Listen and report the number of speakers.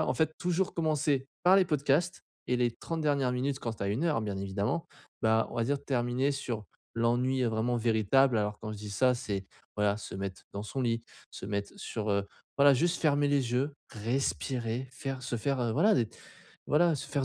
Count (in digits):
1